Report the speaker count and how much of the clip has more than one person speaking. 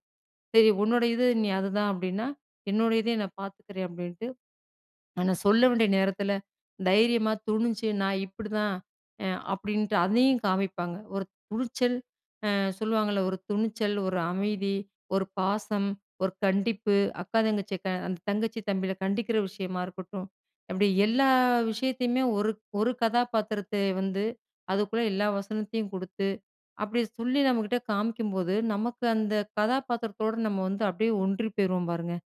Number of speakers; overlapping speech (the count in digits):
1, no overlap